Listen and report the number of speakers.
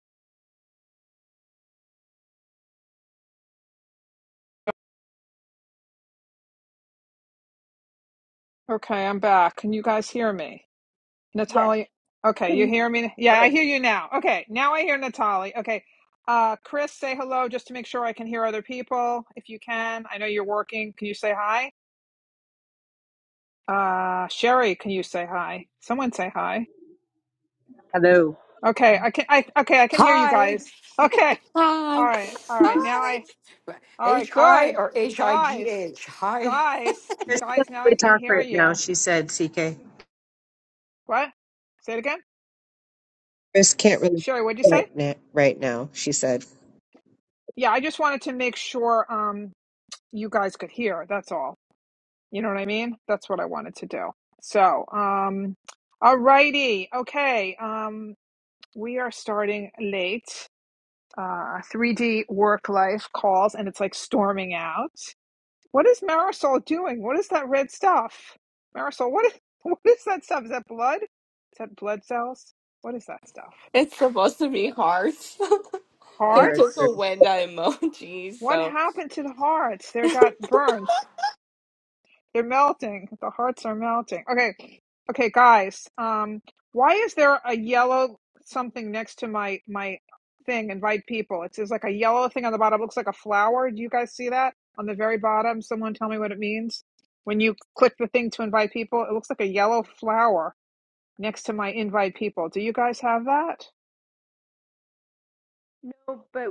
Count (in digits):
5